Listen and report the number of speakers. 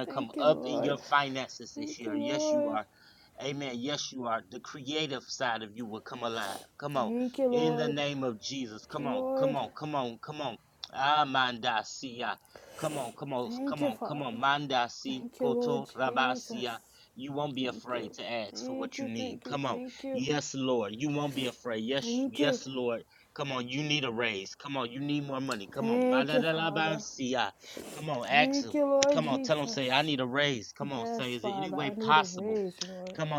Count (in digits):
2